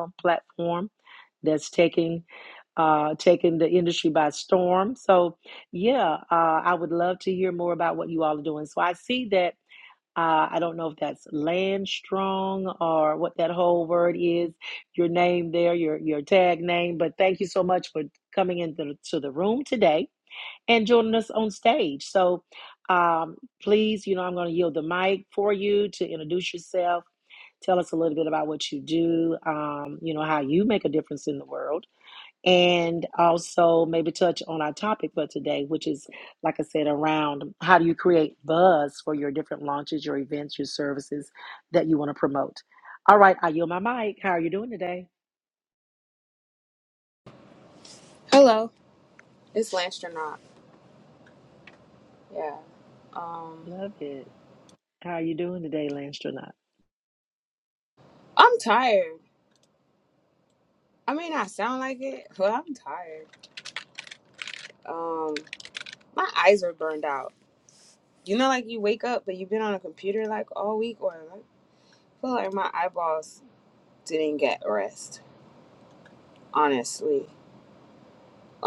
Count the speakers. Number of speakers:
two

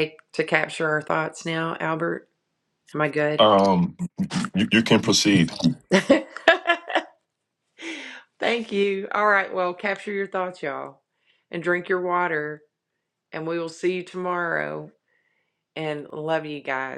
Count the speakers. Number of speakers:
two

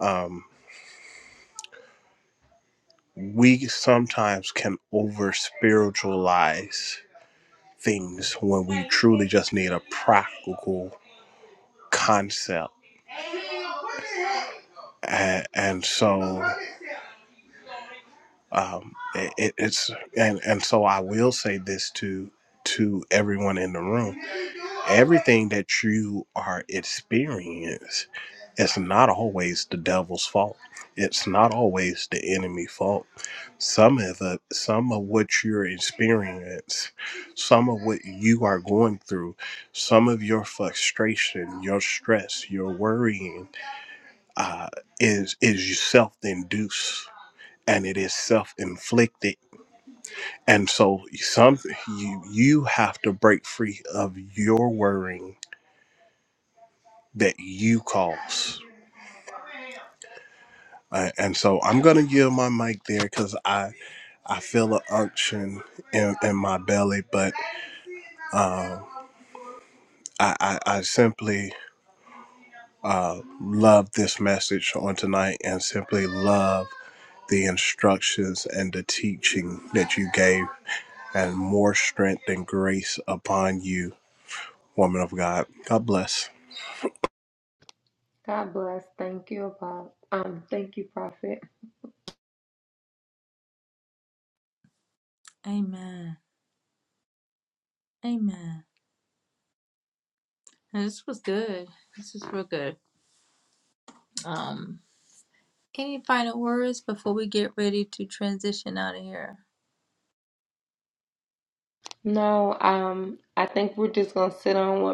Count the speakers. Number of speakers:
three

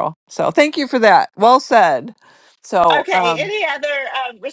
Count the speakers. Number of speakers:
two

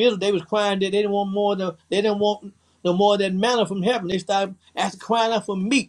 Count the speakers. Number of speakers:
one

